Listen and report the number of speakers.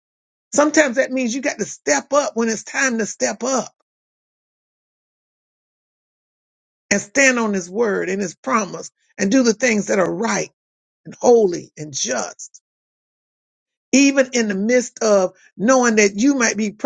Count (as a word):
one